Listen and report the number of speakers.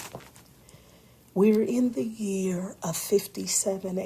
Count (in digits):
1